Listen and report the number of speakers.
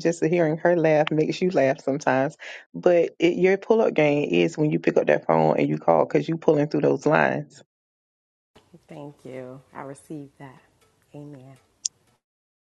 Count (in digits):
2